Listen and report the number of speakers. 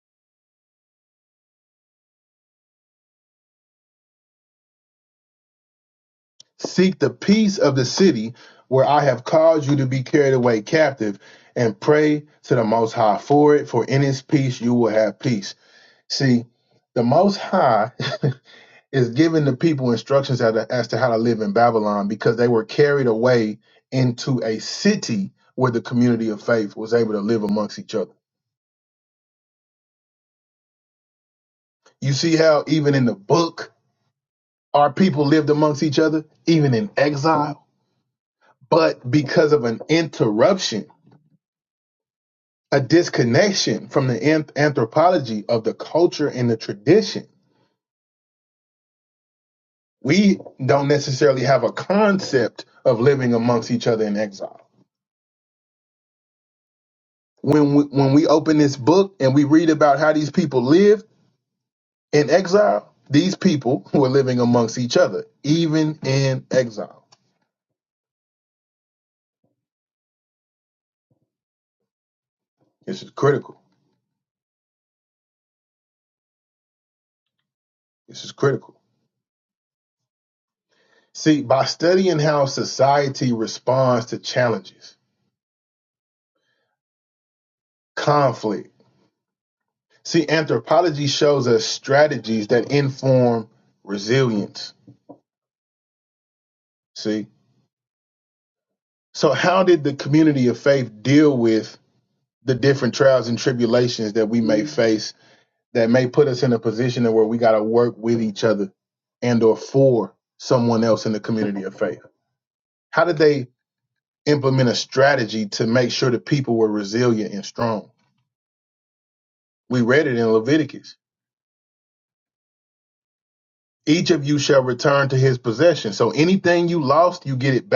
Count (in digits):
1